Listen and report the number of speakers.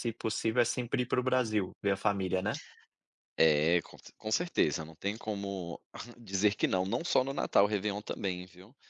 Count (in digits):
2